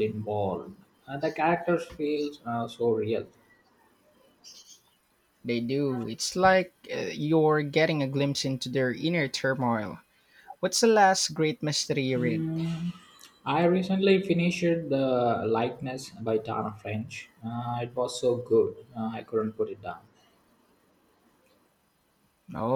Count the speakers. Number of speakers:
2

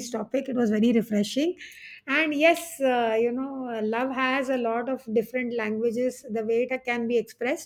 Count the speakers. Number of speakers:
1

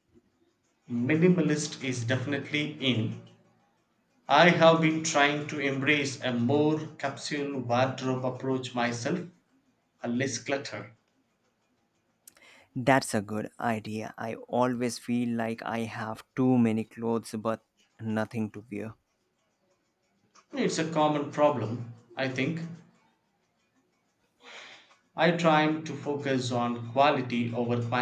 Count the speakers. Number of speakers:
2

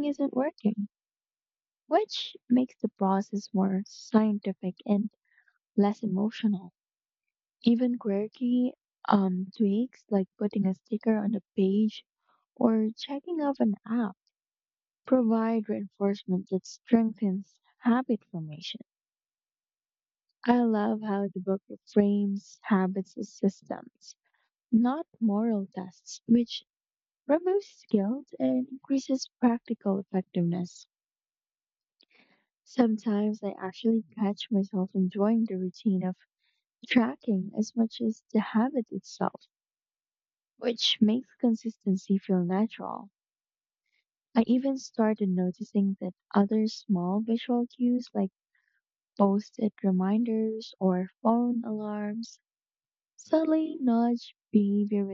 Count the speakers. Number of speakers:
1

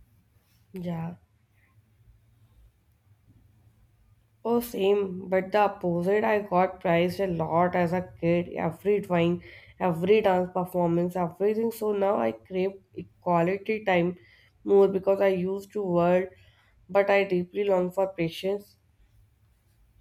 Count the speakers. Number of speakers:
1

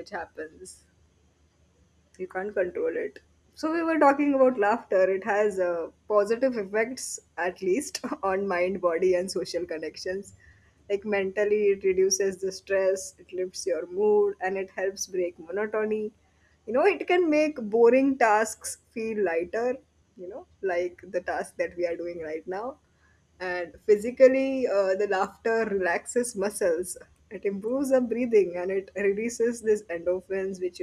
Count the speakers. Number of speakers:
1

